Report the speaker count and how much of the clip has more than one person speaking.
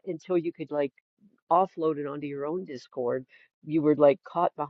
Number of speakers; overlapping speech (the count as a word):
one, no overlap